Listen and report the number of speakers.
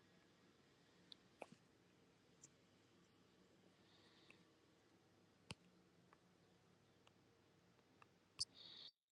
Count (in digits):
0